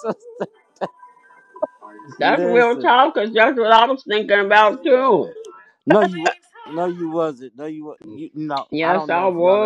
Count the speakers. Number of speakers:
2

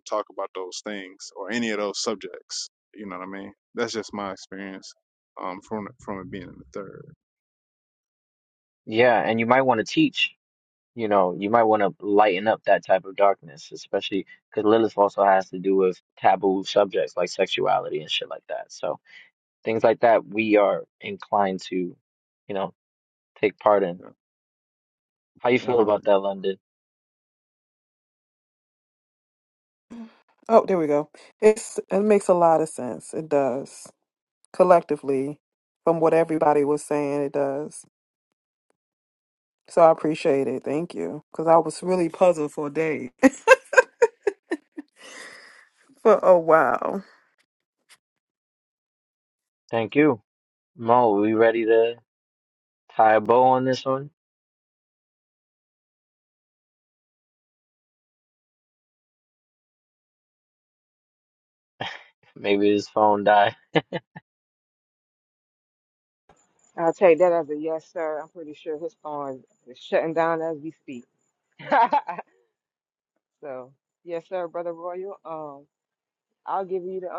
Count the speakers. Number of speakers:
4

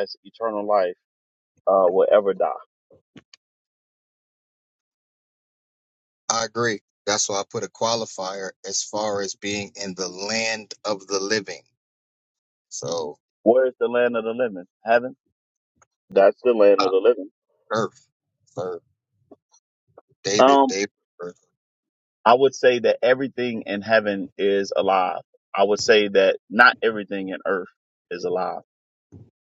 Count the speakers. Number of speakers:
2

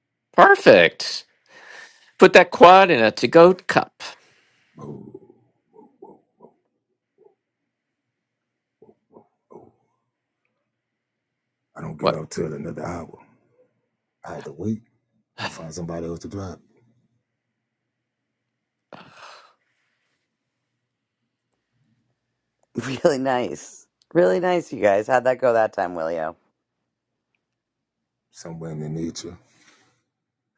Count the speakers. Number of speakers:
3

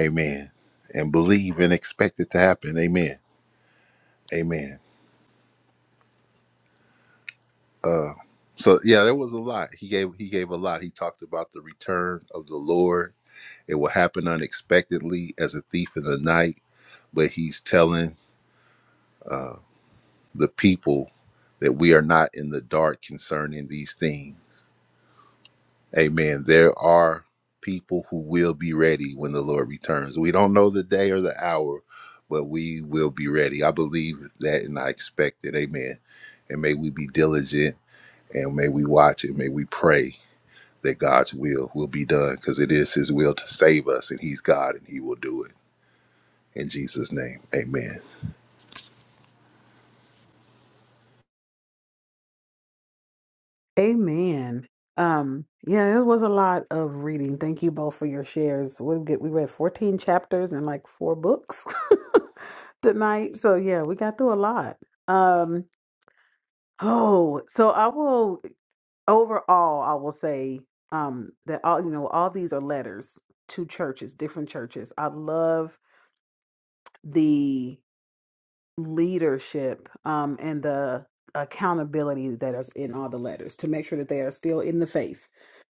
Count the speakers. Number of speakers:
2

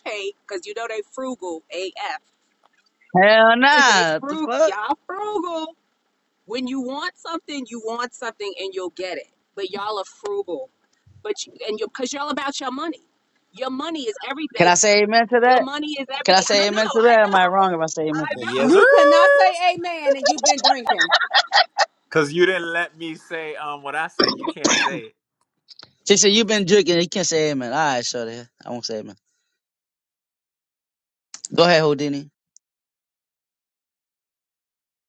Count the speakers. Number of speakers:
4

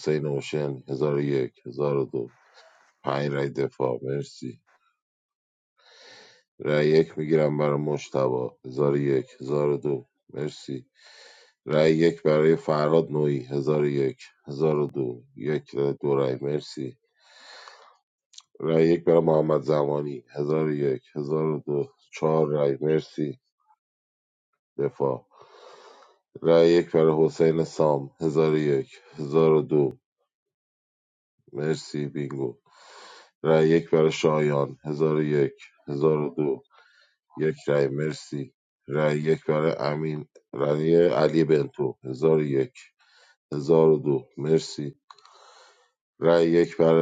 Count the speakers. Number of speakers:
1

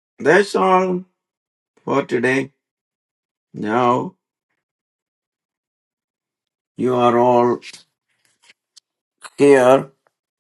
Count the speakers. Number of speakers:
1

